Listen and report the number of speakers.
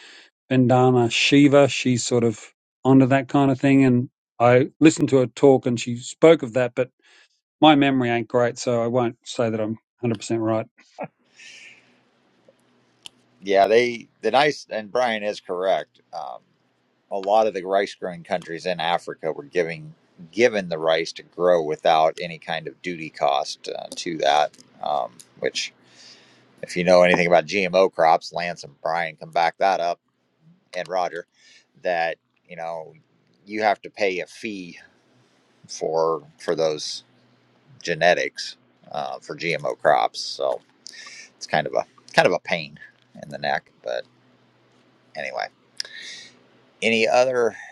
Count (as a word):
two